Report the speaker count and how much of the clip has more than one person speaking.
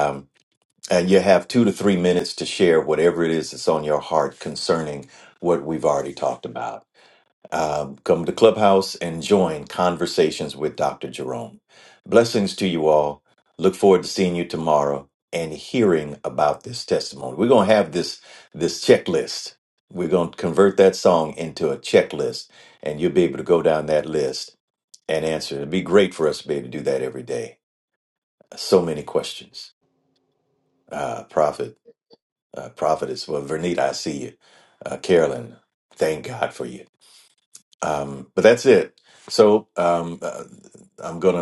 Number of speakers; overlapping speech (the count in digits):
1, no overlap